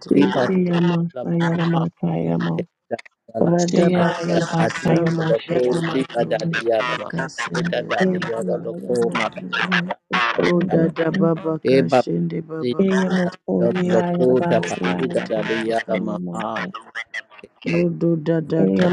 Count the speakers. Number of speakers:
3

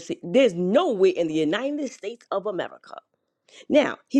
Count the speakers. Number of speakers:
1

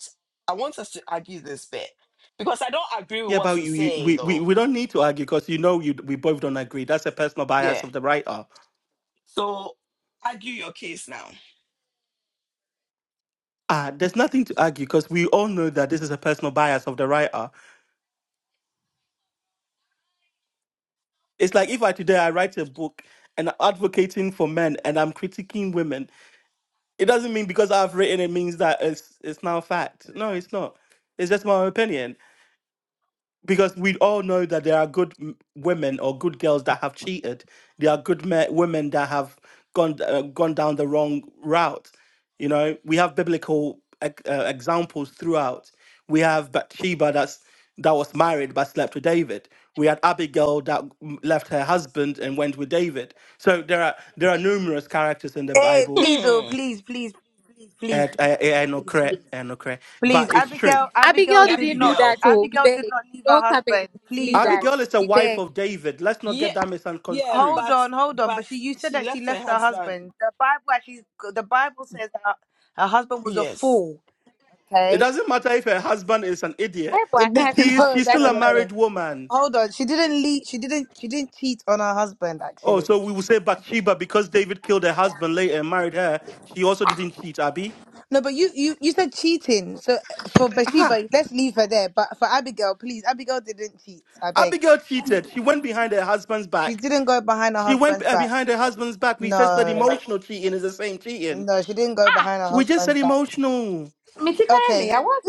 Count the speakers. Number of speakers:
4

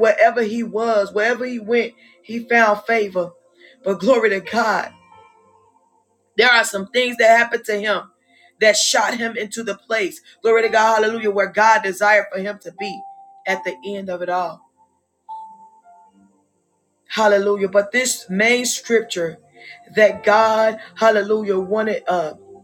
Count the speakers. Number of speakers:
1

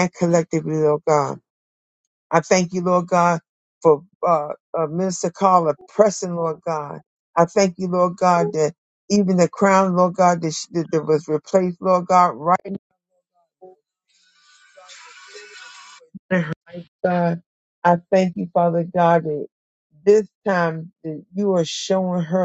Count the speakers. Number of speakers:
1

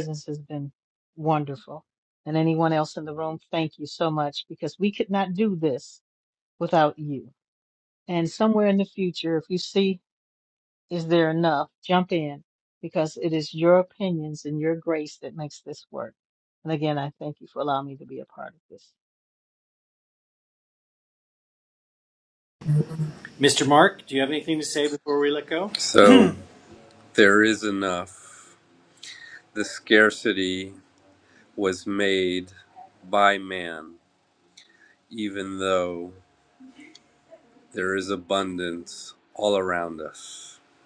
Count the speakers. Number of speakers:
3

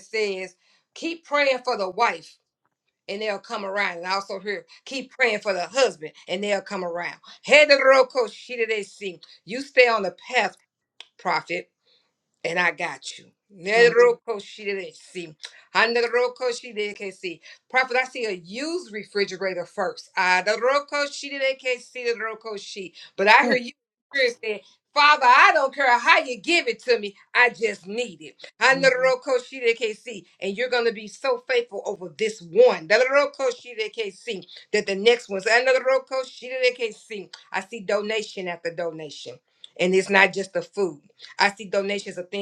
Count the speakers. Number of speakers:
1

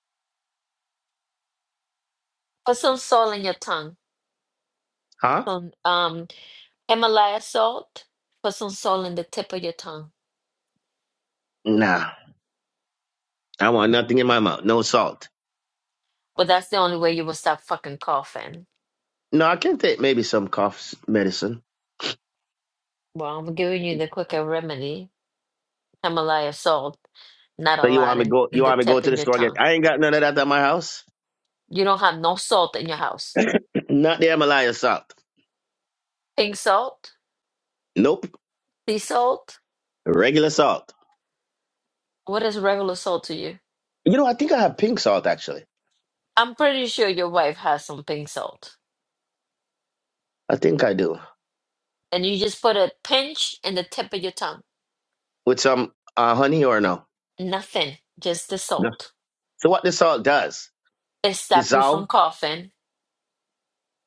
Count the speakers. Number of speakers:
2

